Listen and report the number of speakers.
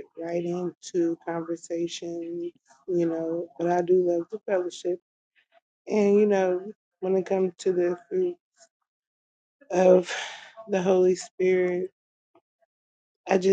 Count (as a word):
one